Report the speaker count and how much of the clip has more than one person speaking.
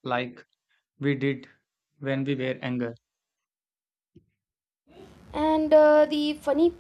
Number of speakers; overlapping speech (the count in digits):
2, no overlap